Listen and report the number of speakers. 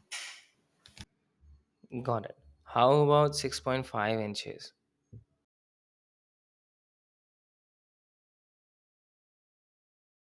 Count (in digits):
1